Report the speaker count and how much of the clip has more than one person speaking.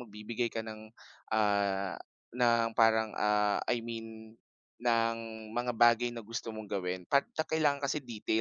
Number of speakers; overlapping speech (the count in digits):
1, no overlap